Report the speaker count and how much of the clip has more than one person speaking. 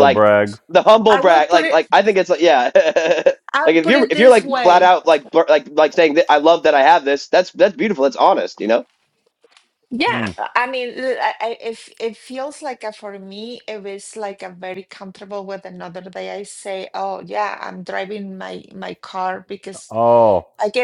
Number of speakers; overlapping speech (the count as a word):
three, about 12%